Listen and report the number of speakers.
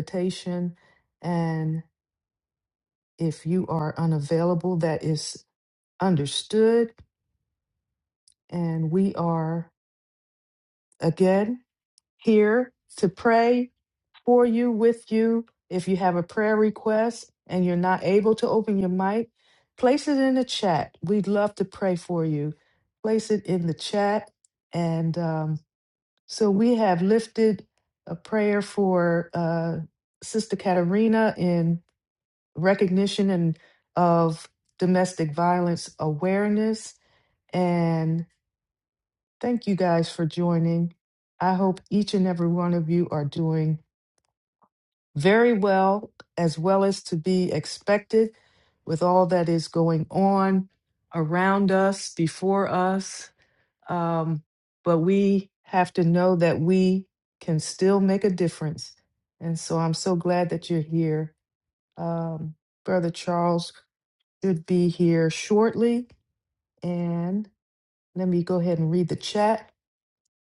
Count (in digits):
1